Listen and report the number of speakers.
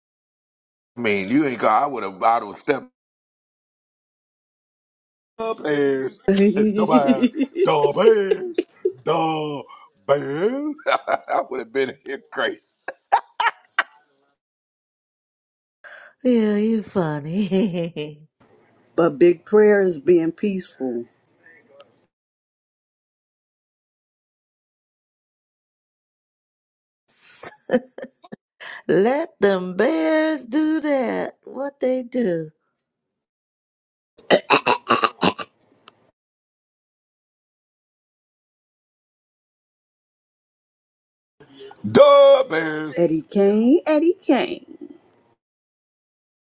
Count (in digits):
3